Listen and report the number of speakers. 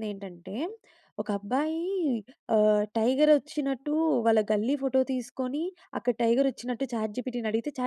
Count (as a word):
one